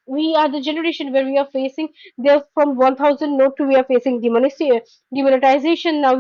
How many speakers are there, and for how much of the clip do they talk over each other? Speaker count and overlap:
1, no overlap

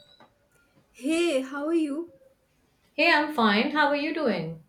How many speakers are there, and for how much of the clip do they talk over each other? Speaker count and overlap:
2, no overlap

